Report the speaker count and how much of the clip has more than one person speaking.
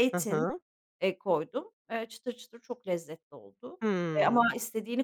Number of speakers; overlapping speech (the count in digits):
2, about 13%